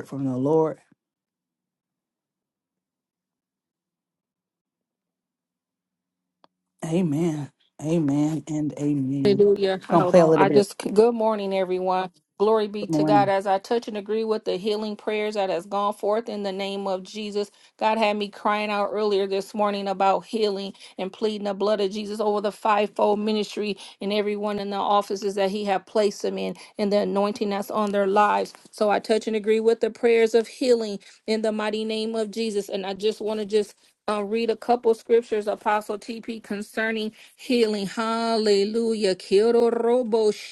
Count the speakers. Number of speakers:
2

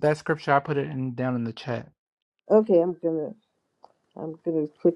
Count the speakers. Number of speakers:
2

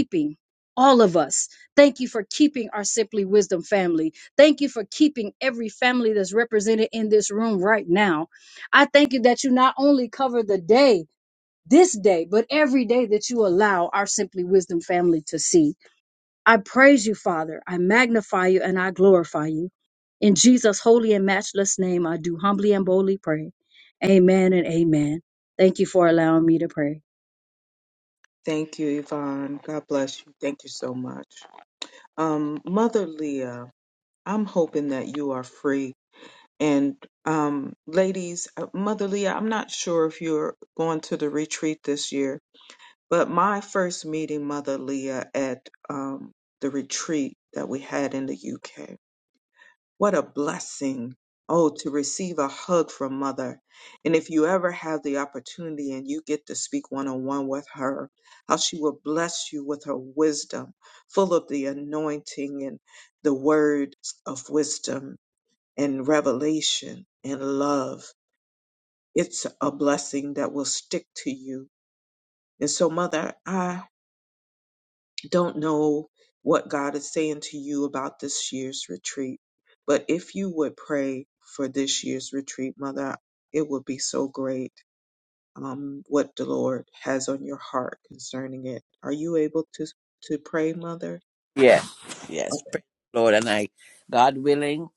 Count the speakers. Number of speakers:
3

